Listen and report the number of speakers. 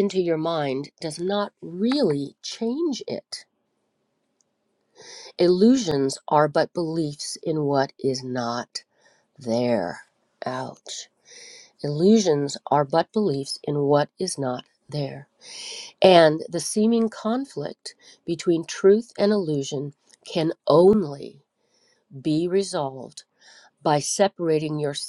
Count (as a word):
one